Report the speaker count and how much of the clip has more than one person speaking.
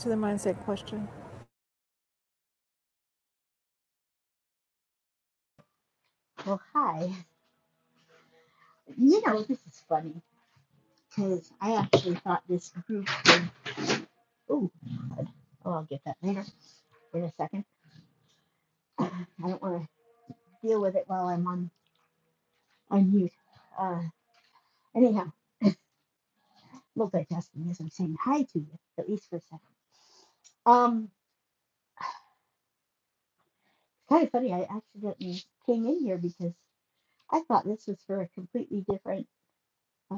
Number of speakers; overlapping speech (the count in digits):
2, no overlap